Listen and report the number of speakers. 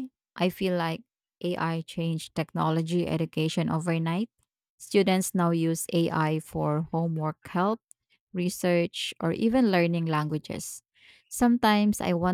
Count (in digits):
1